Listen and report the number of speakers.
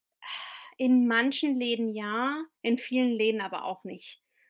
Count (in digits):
1